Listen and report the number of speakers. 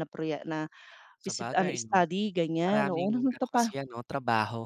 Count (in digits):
2